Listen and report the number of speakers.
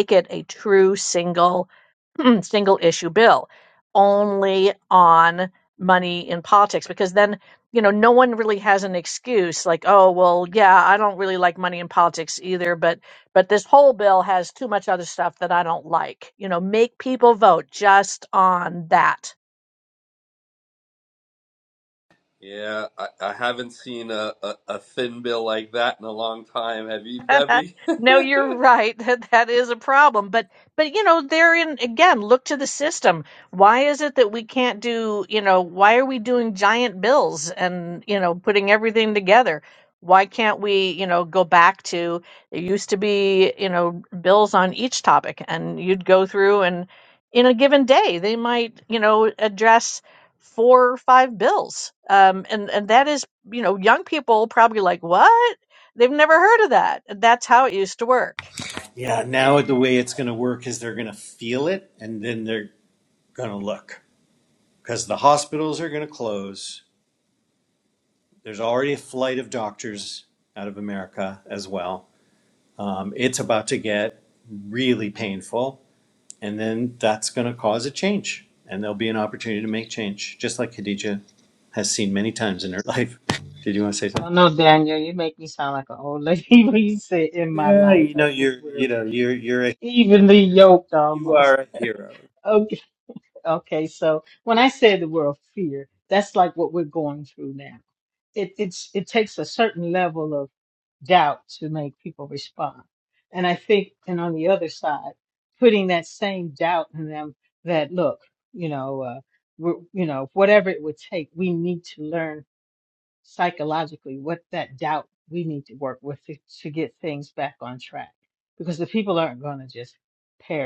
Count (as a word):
four